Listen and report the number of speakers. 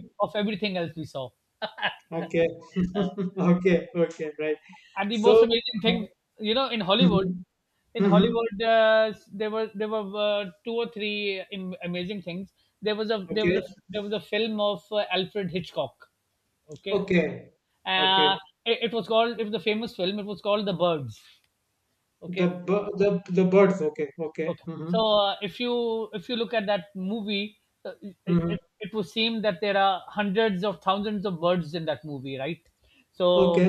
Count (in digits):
2